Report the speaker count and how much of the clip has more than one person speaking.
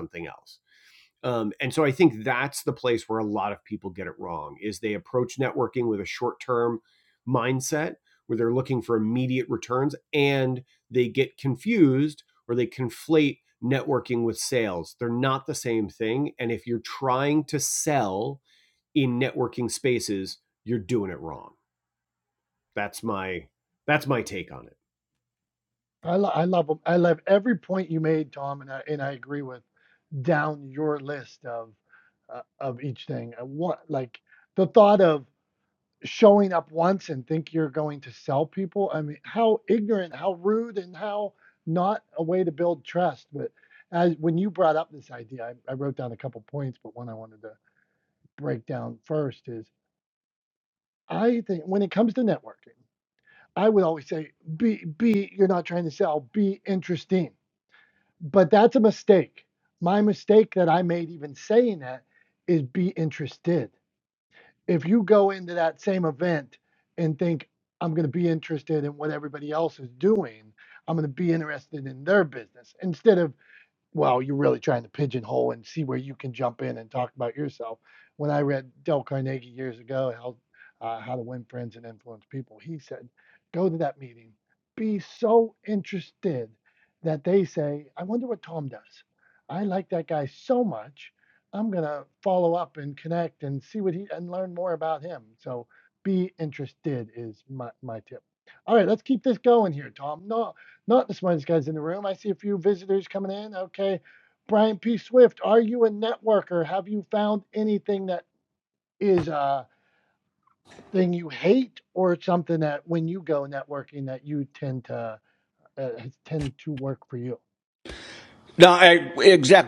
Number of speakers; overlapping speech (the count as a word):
three, no overlap